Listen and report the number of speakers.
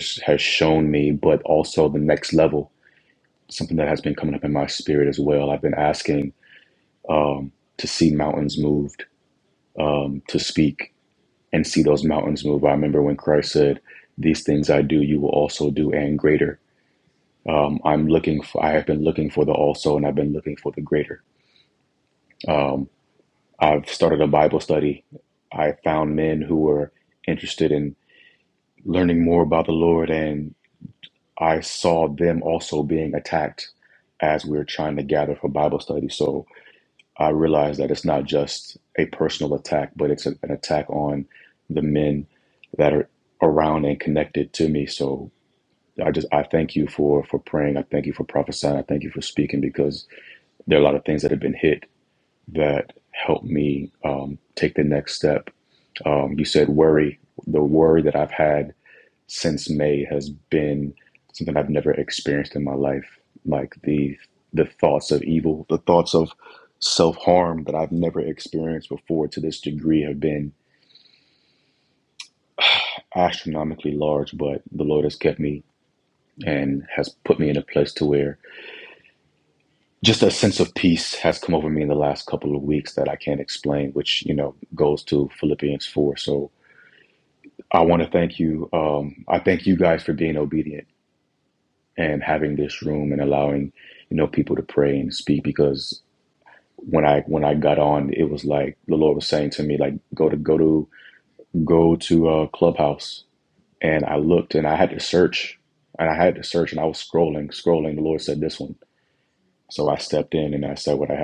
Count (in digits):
1